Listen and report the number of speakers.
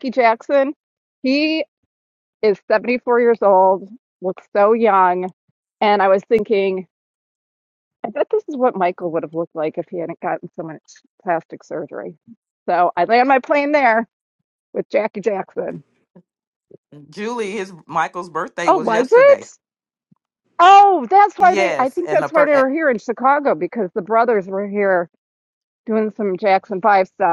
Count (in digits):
2